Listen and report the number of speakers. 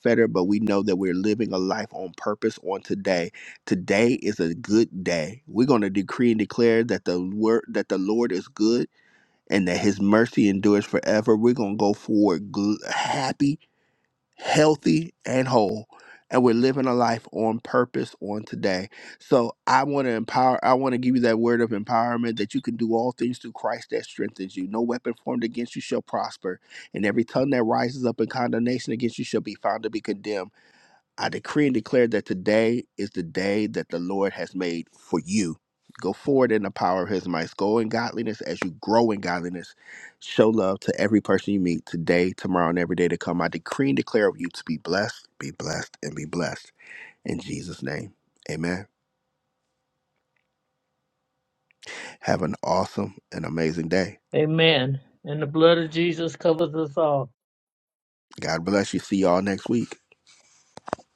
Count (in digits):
2